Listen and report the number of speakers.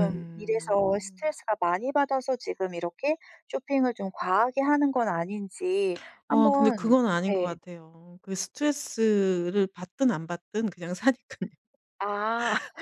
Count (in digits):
2